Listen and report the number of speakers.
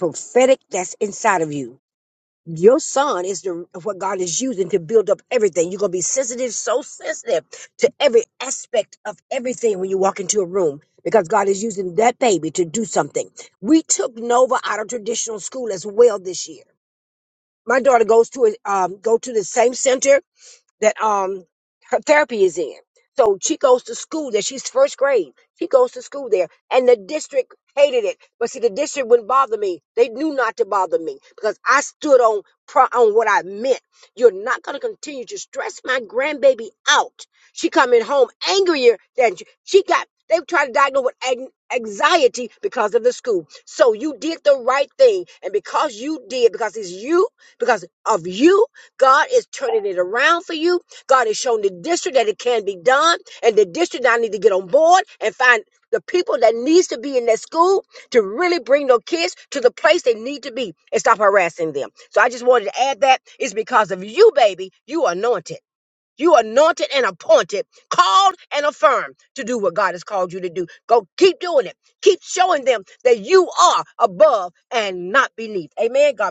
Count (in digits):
1